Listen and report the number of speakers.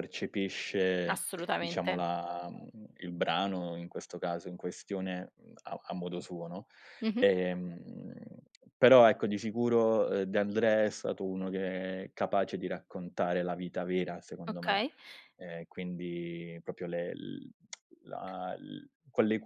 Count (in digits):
2